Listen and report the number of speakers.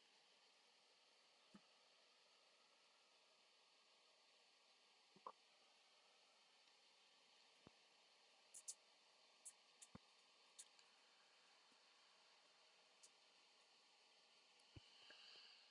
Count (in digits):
0